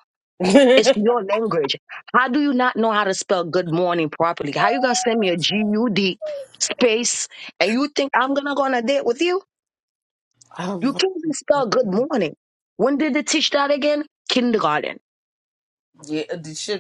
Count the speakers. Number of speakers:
2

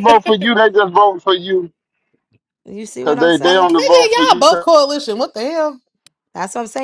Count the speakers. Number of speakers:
3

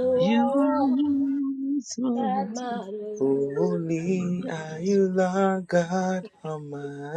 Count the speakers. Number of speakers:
3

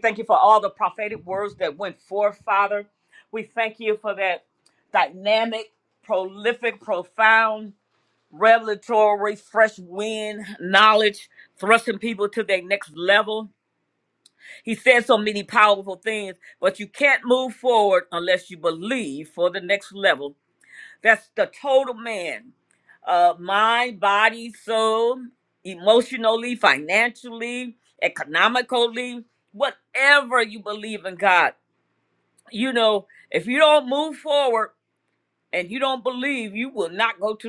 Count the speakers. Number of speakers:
1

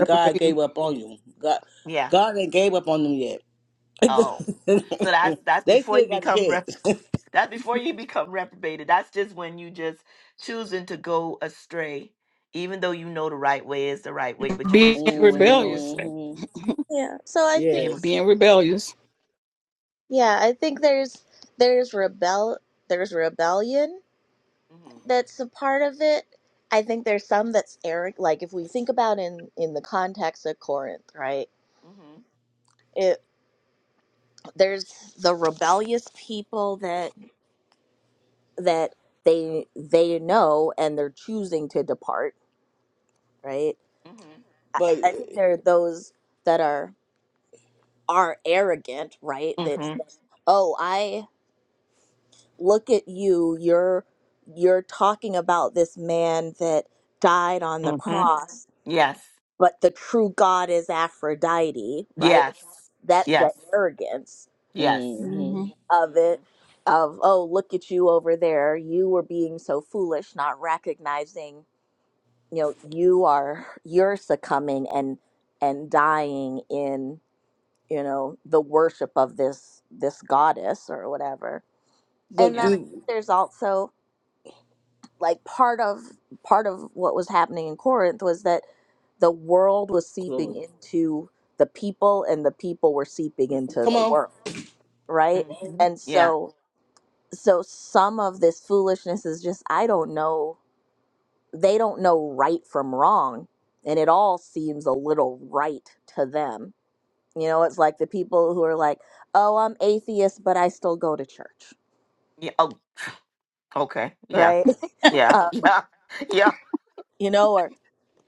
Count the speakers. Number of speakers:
4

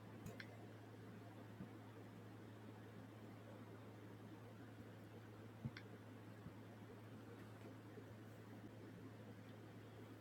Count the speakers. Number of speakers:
0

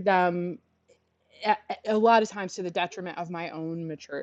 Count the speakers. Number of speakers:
1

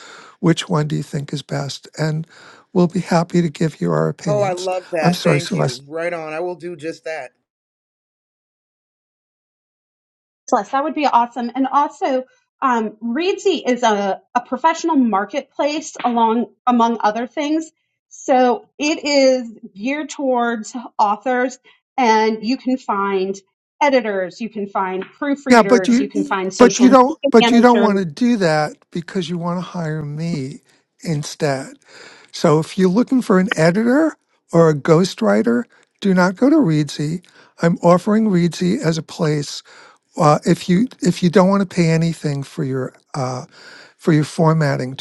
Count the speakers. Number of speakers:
3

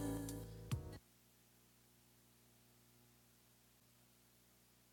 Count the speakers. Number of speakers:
0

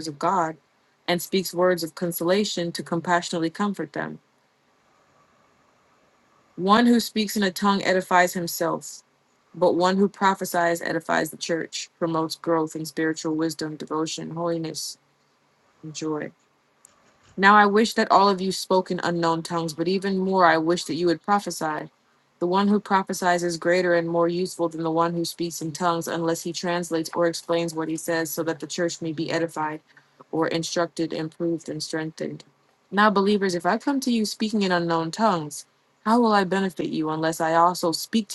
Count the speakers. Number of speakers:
1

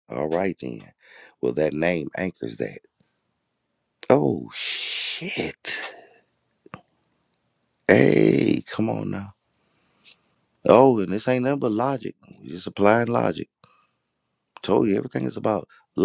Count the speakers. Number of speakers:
1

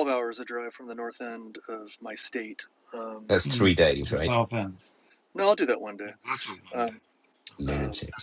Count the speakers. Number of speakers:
3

